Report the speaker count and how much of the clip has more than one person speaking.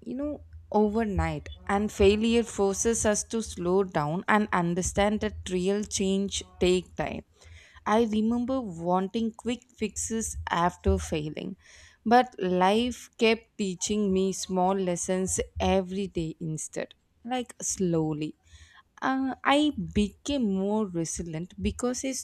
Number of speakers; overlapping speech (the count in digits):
1, no overlap